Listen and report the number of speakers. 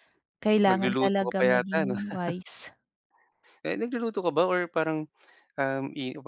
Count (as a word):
two